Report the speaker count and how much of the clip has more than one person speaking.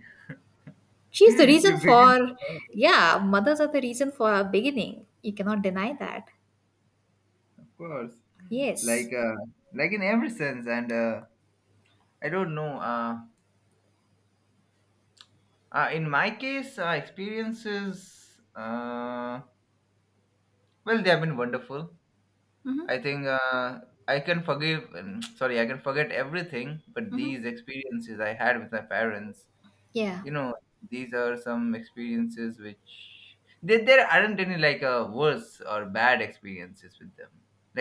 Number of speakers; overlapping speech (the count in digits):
2, about 4%